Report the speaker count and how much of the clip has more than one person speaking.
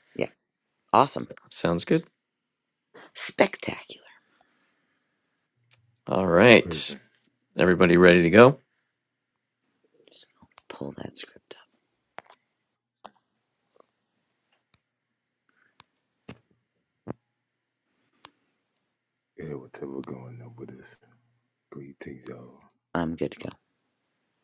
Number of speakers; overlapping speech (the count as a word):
three, about 1%